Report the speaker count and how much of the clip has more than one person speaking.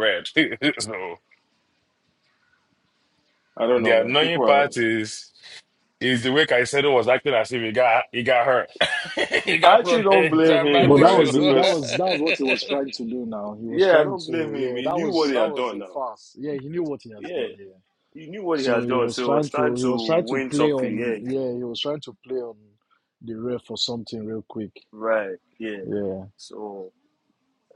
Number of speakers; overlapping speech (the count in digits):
3, about 30%